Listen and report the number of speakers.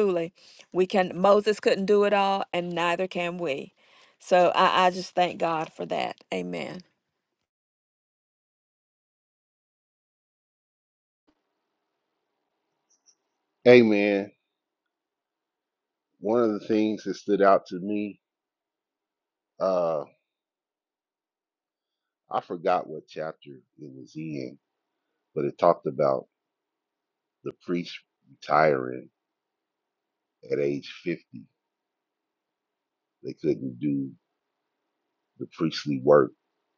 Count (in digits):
2